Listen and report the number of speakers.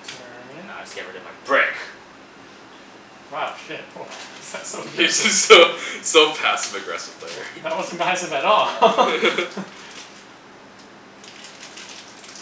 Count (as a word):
three